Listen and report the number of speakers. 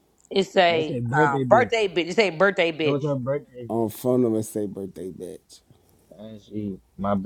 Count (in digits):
3